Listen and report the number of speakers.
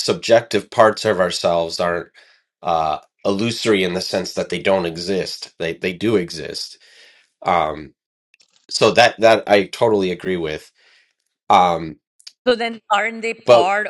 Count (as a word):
two